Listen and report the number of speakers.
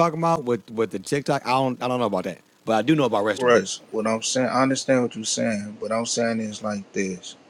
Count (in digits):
2